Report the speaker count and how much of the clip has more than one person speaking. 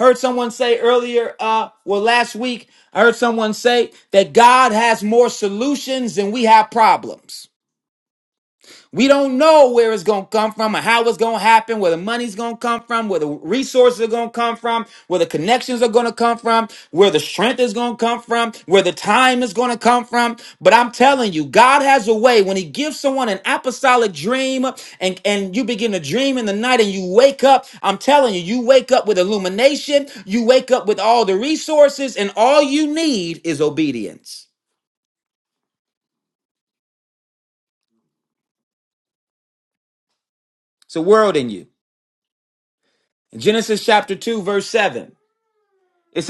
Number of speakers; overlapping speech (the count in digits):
1, no overlap